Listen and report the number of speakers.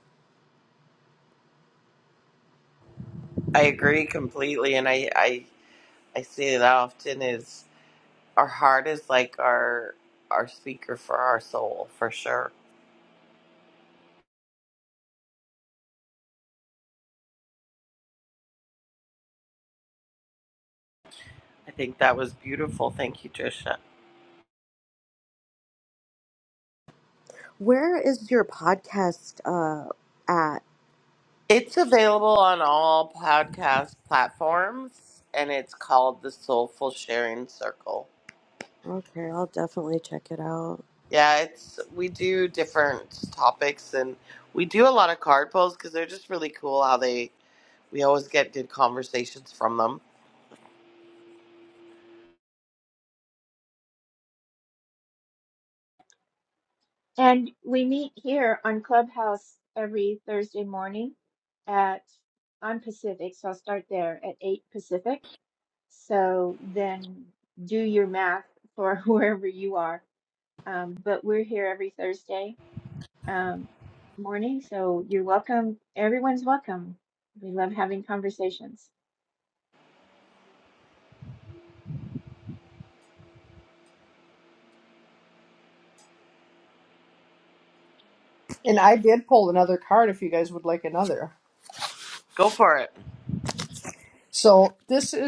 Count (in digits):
4